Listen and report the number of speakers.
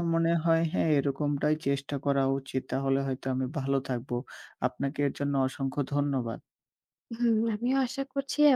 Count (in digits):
2